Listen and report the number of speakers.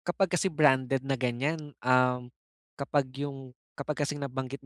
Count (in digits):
1